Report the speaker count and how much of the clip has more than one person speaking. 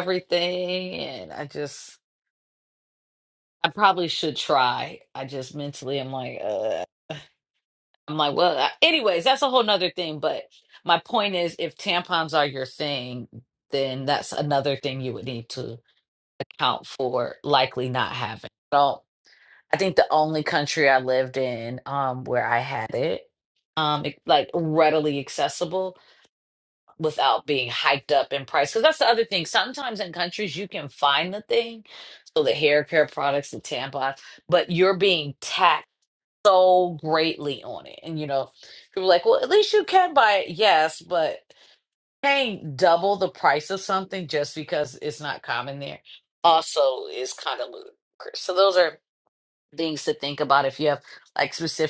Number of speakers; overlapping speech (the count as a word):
one, no overlap